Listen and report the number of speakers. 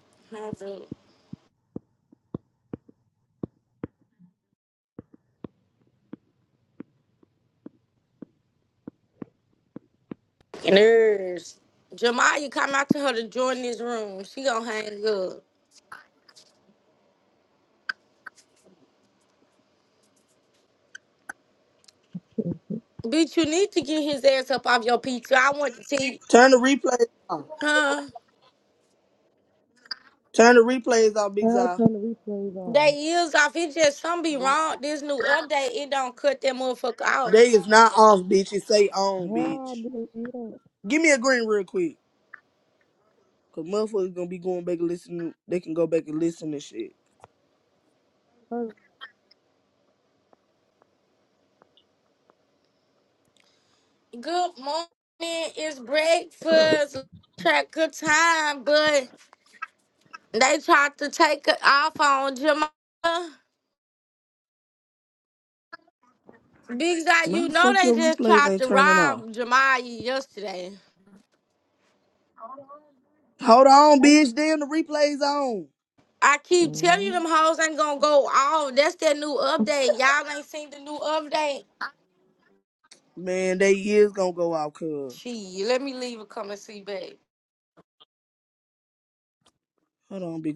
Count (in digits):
3